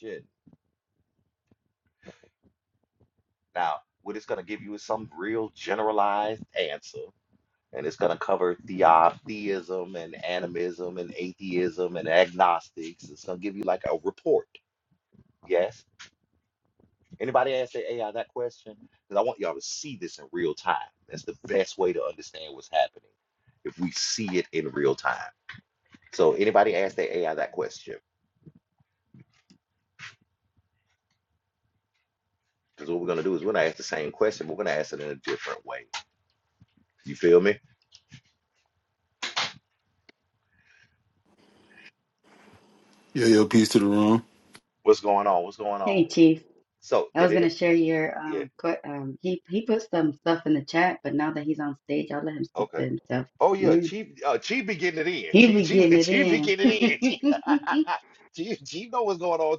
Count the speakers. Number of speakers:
3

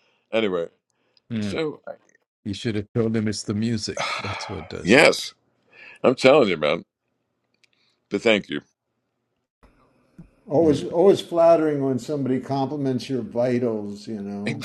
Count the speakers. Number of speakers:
3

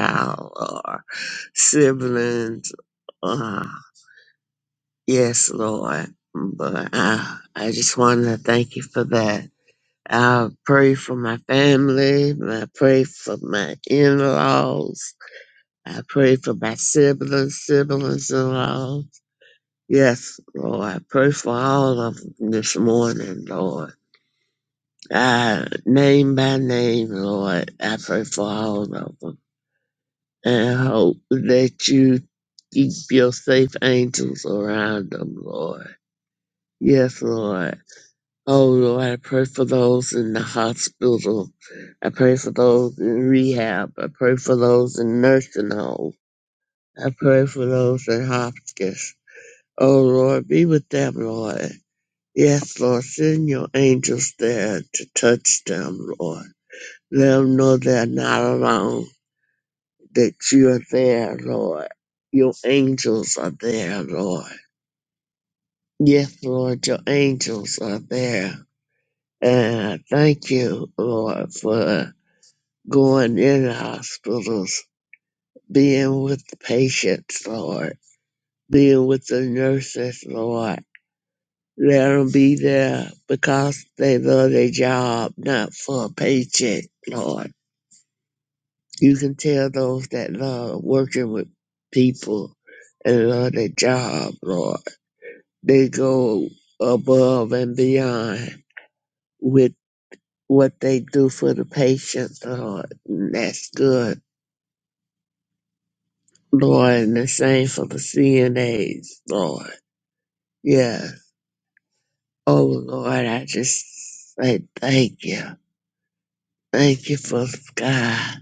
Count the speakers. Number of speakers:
1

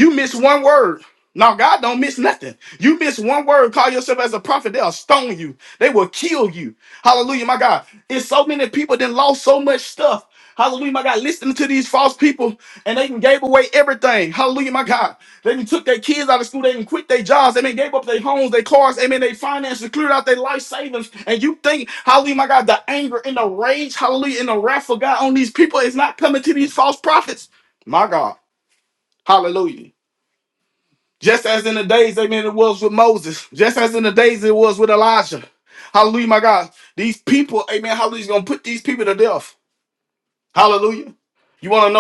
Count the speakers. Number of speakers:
1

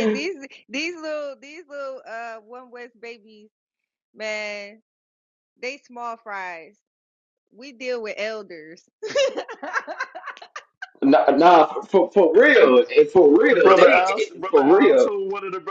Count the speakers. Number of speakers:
3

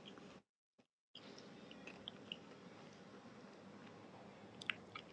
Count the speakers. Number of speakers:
0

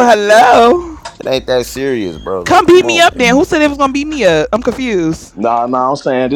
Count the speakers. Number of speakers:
3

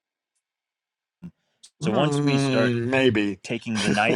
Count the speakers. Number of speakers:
2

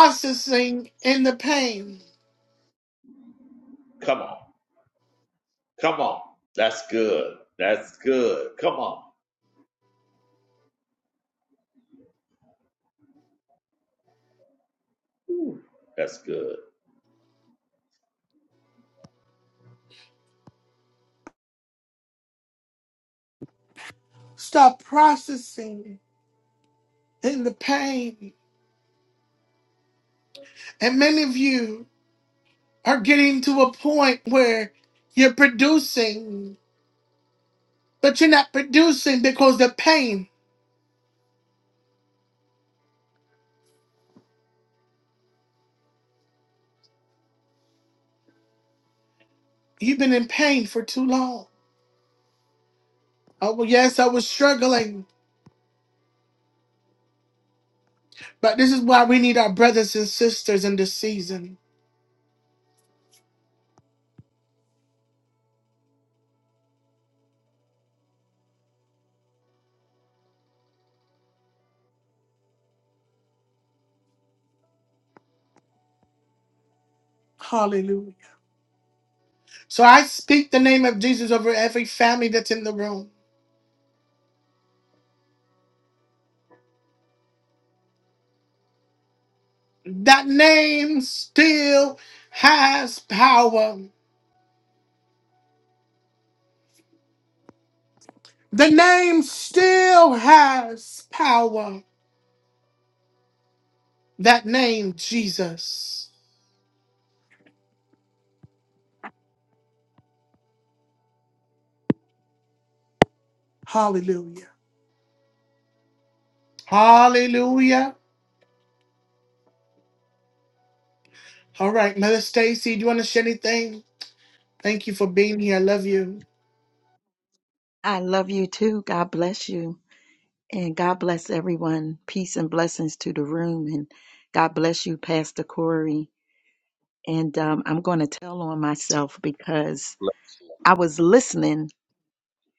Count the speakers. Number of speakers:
3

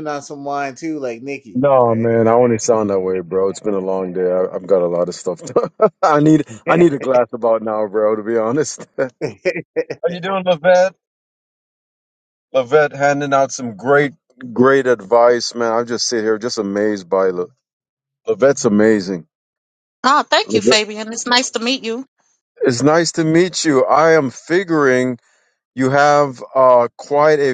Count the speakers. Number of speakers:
3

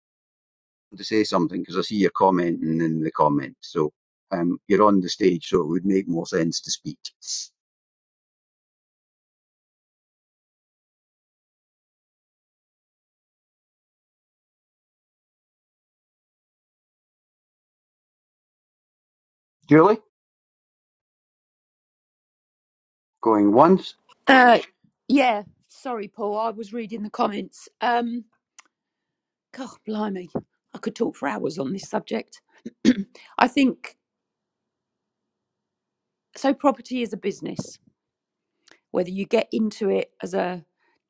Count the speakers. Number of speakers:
2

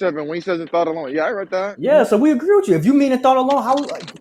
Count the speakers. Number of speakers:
2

